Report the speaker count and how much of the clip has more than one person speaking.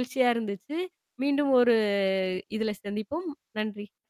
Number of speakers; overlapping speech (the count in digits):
1, no overlap